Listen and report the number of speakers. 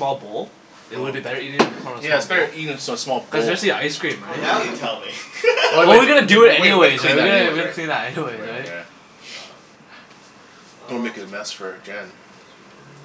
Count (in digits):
3